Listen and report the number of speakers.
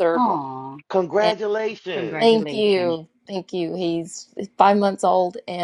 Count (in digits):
3